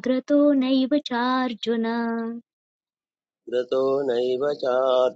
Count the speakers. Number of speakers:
2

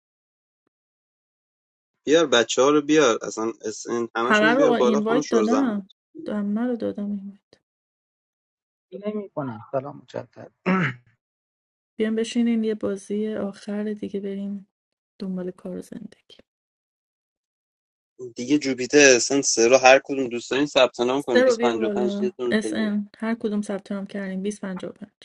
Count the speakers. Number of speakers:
3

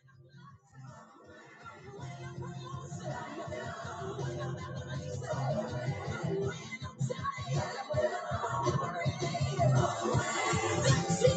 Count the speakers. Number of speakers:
0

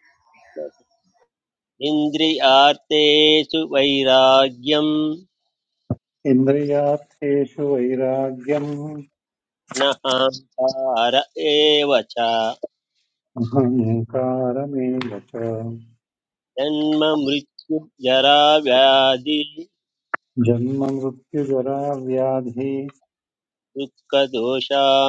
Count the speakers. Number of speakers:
2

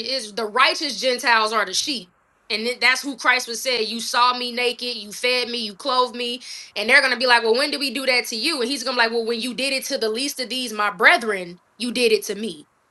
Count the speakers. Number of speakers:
1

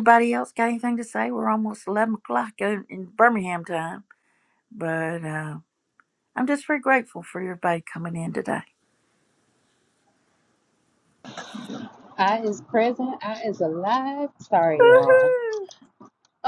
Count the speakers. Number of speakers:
2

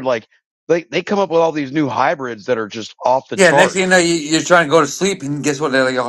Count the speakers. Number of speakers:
2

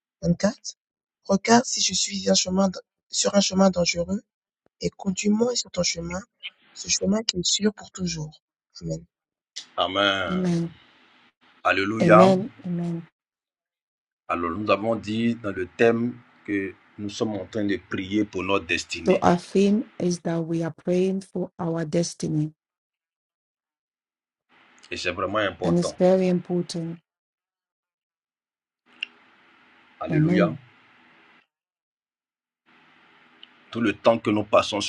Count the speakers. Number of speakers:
3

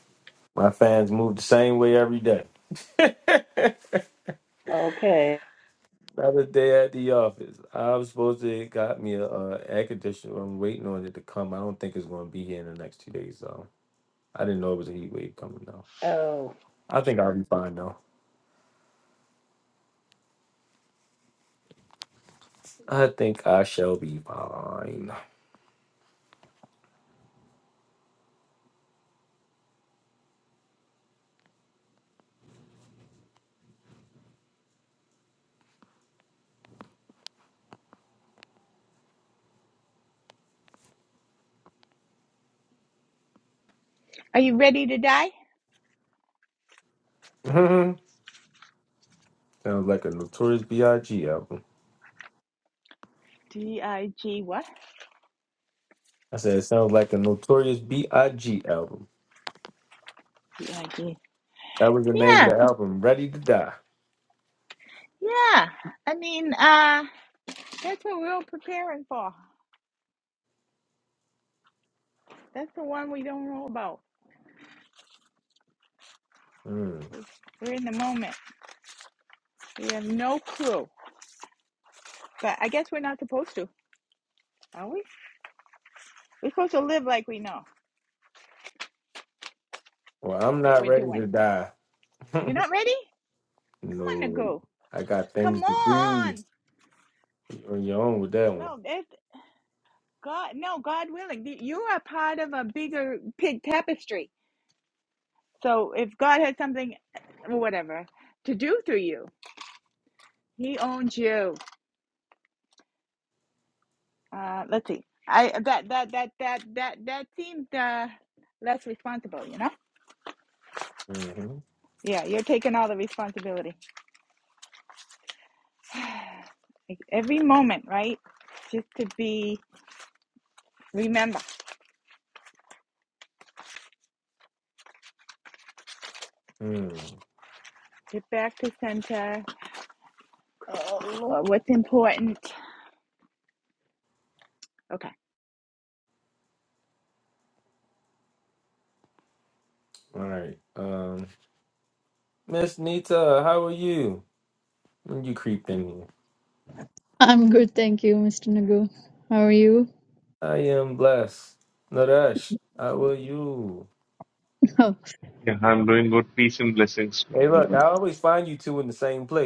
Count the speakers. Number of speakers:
5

